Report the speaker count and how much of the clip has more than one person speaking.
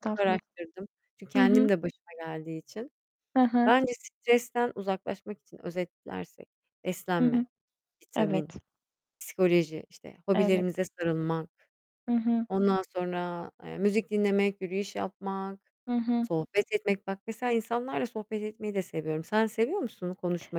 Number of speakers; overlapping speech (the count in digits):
2, about 8%